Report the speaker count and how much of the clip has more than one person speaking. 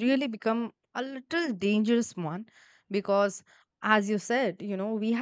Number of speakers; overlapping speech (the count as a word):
one, no overlap